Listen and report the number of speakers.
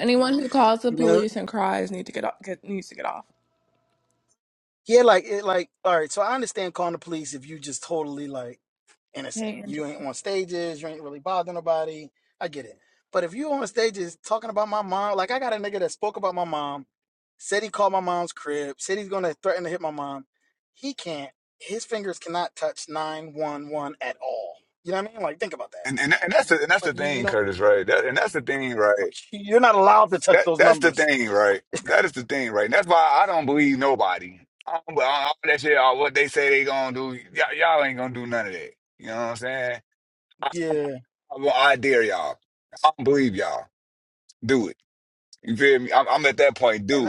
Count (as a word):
three